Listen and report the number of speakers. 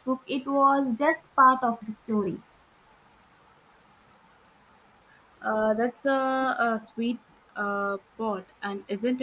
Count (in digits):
2